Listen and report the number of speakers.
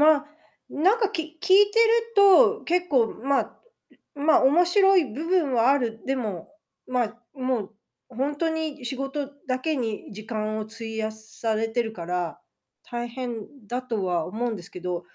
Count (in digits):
1